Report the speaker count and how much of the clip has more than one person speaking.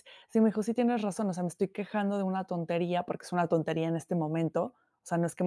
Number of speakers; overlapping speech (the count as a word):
one, no overlap